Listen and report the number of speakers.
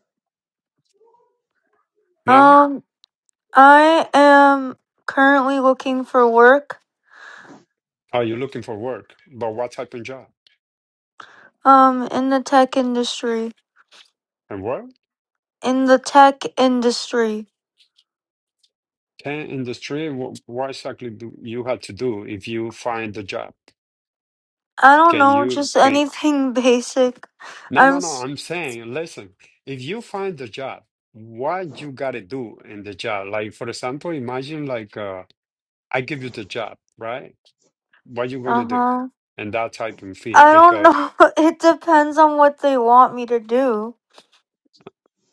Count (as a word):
two